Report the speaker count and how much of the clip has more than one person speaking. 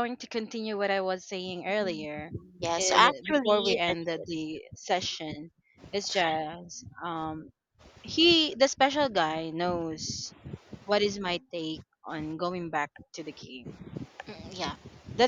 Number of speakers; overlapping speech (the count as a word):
two, about 10%